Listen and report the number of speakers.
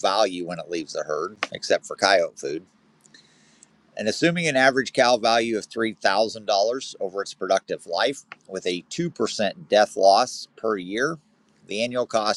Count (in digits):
1